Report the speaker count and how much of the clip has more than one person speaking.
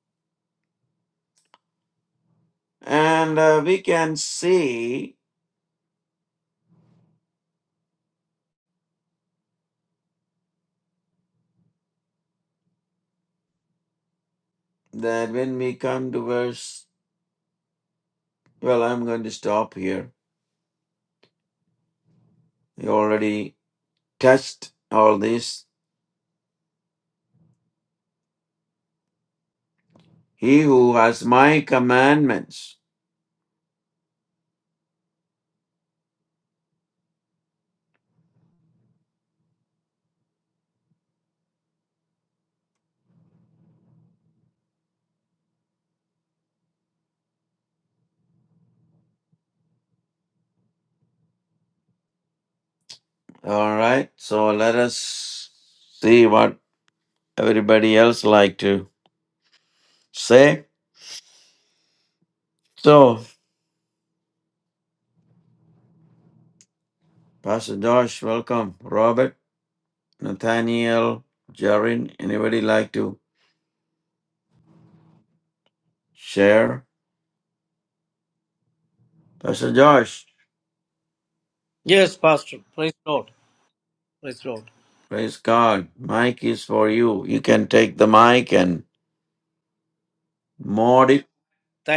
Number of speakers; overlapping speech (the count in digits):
2, no overlap